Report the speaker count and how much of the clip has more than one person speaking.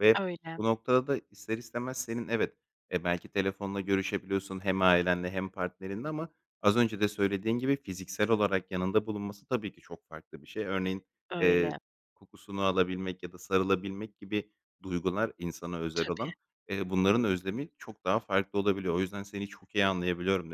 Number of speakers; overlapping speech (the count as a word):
two, about 4%